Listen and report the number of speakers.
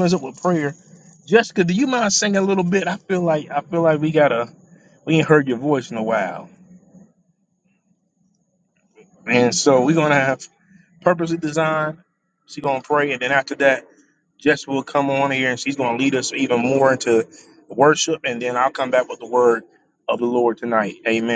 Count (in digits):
1